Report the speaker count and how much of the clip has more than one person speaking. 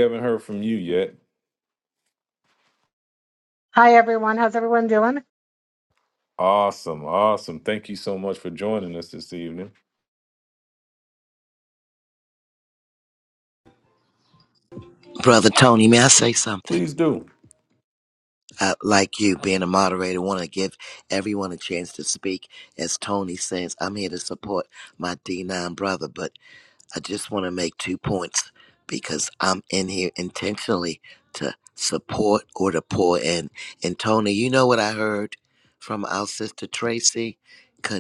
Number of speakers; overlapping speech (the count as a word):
three, under 1%